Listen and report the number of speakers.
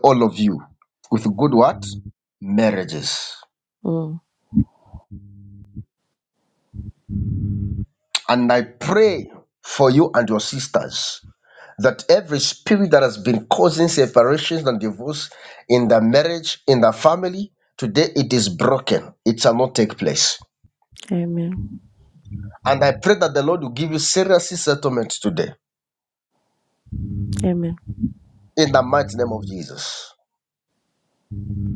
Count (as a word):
two